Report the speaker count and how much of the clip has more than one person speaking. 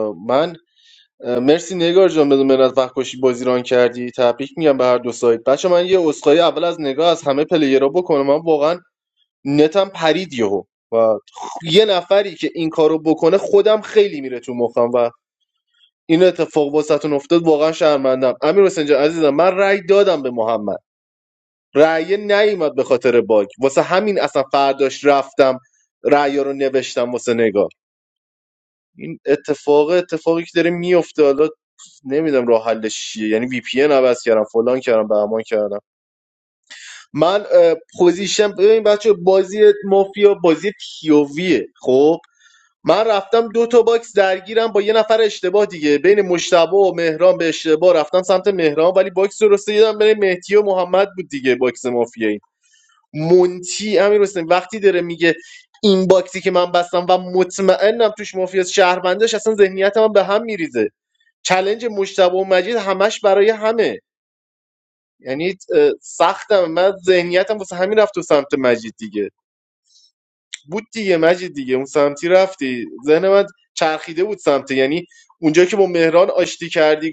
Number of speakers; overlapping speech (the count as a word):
one, no overlap